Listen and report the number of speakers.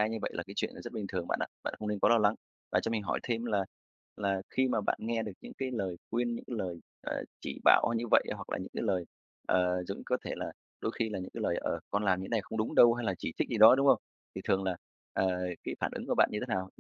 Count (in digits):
1